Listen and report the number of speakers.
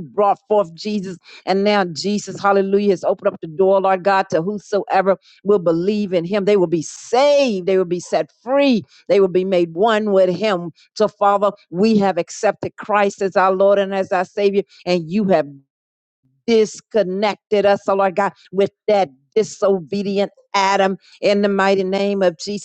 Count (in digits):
1